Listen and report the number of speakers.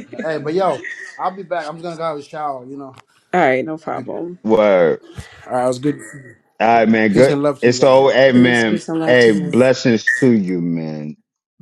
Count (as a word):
three